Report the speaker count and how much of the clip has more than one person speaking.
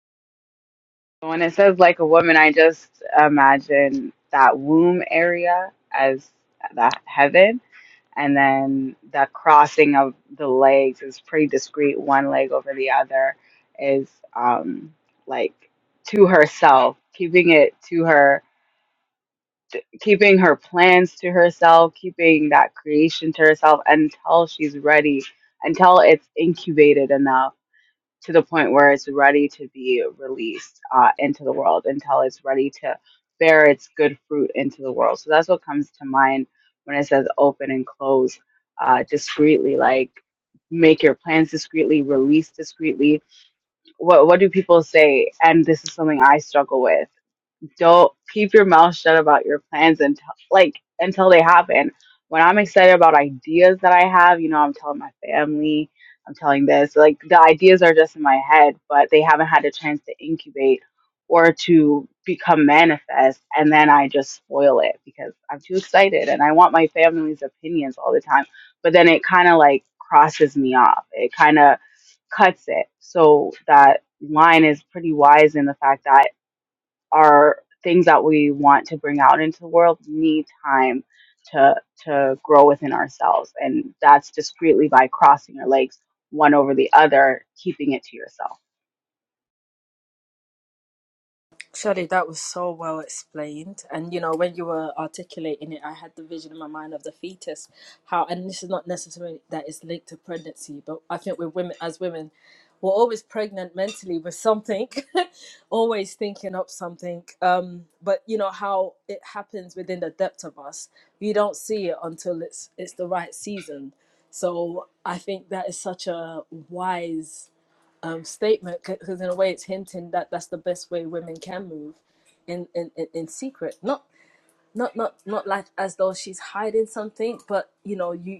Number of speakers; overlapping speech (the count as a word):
two, no overlap